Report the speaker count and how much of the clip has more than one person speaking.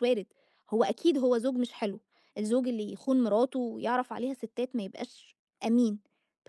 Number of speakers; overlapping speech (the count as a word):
one, no overlap